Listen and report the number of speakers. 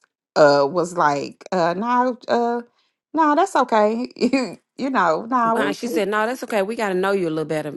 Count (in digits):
2